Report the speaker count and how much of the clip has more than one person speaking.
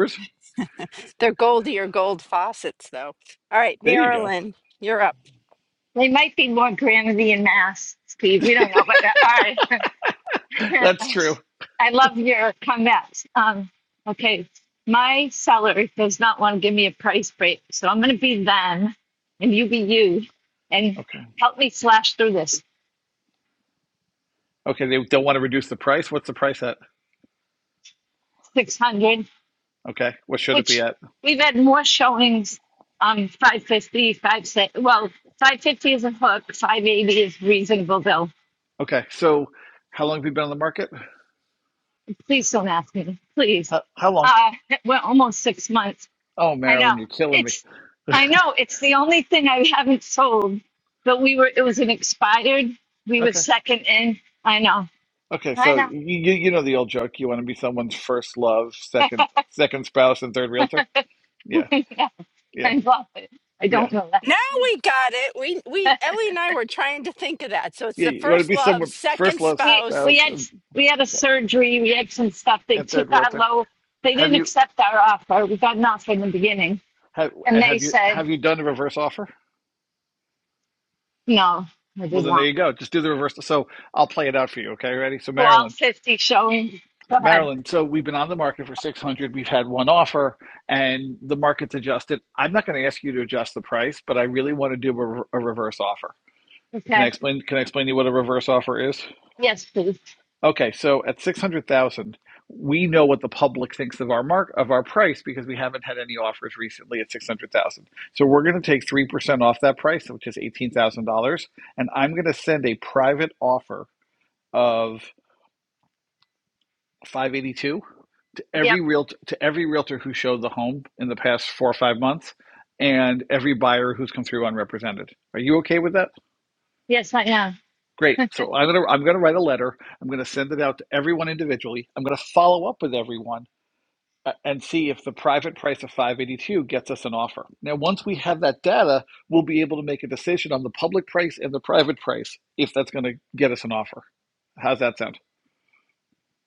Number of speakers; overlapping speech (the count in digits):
3, about 5%